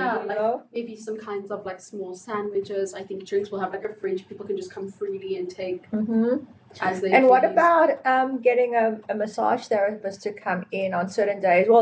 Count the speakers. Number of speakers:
2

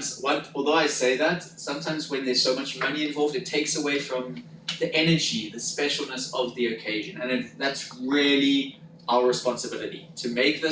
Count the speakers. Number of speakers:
1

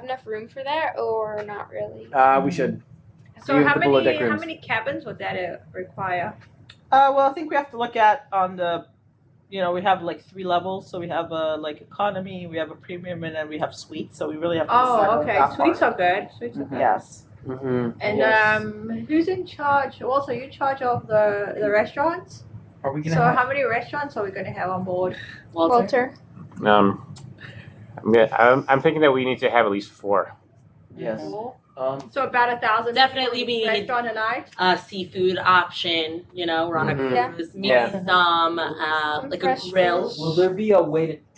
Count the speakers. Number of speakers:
7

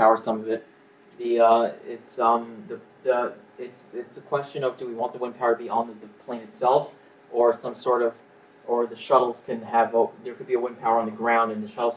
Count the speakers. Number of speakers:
1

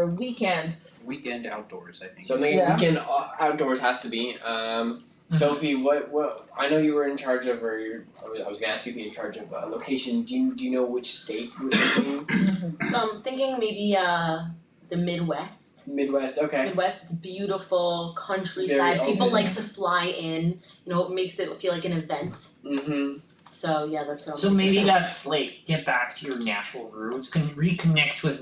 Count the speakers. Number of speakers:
5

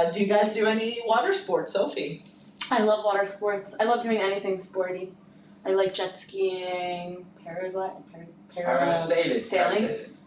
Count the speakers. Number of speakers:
3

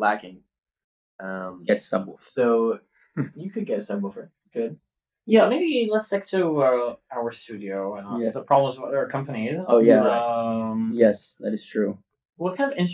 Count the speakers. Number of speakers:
3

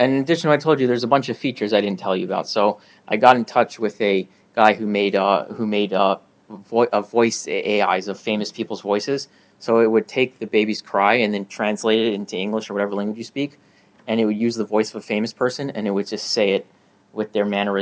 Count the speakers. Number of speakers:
1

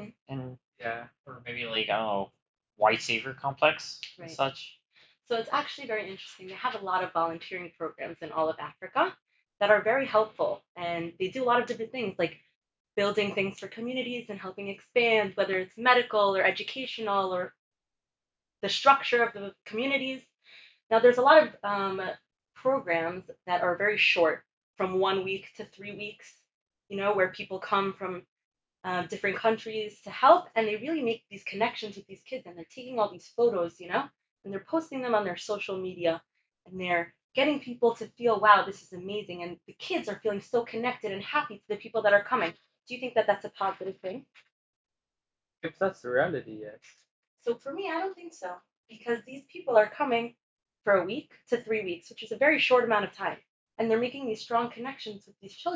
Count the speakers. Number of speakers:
3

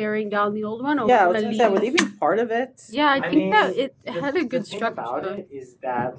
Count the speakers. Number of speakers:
3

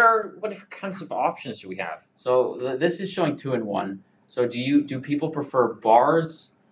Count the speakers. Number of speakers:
2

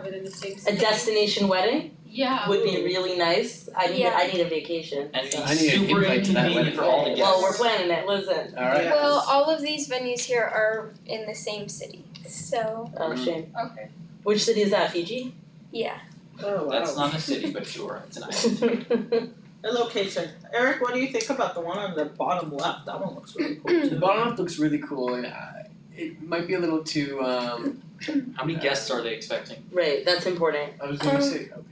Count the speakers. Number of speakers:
6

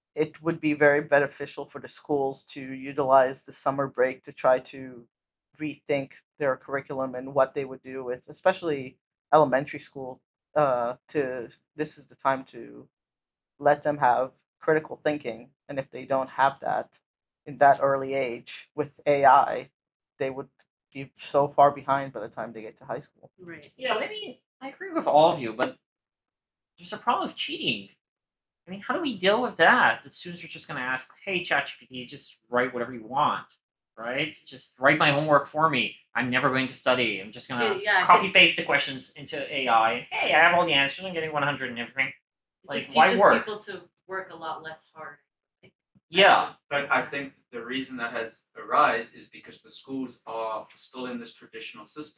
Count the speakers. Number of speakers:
4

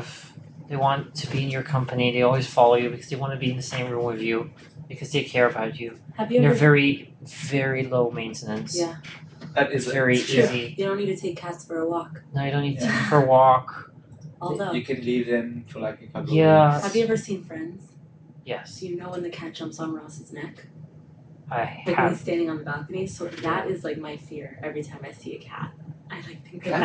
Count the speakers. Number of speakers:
3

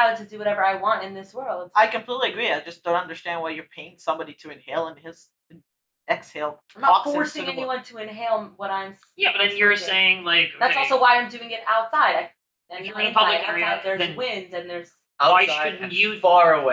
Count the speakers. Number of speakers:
4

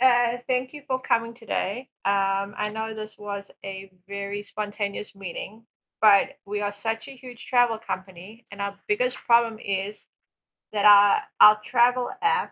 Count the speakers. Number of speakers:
1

